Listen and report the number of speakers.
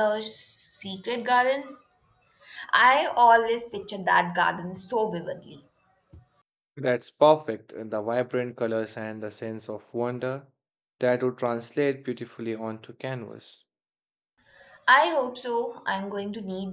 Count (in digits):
2